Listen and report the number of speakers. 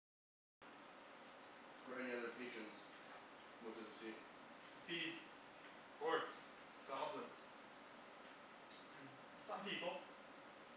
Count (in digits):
2